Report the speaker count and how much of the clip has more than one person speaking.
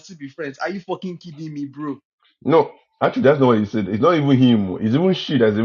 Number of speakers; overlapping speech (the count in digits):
2, no overlap